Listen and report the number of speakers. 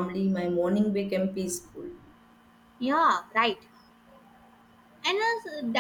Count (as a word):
two